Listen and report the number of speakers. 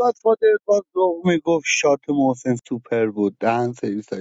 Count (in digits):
1